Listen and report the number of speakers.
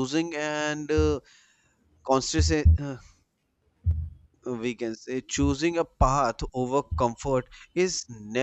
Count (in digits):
1